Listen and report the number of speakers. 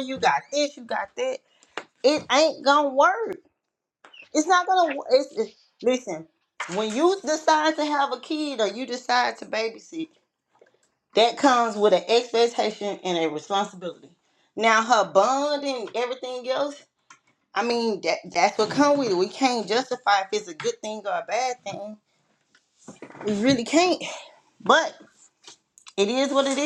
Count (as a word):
one